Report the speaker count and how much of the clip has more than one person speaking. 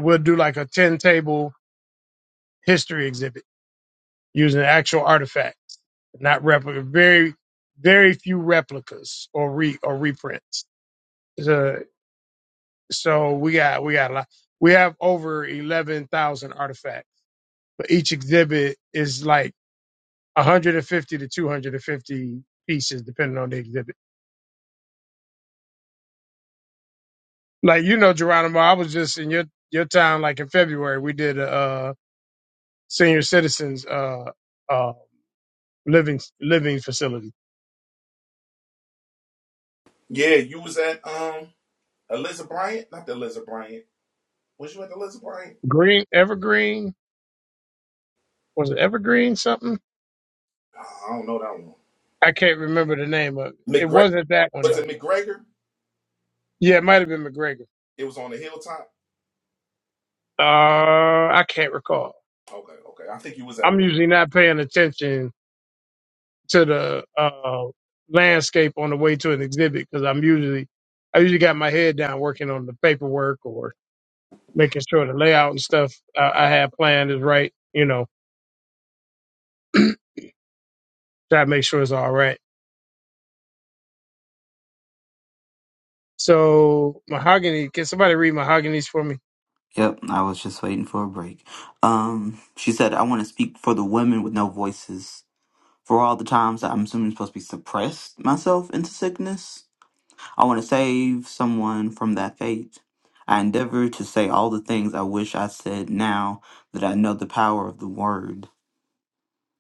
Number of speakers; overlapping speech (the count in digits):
3, about 1%